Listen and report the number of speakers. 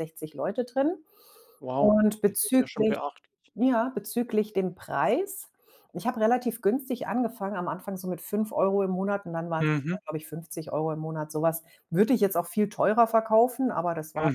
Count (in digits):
2